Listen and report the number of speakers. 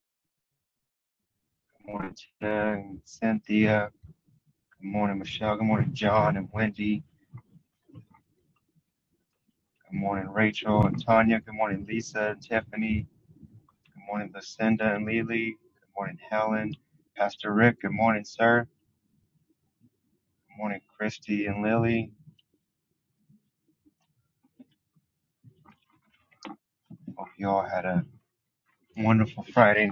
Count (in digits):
1